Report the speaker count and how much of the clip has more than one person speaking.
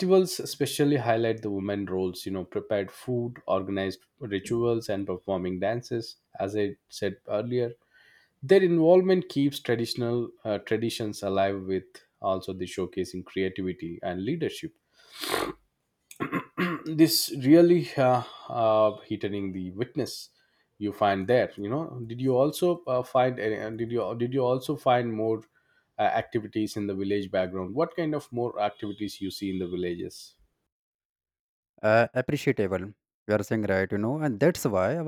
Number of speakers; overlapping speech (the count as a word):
two, no overlap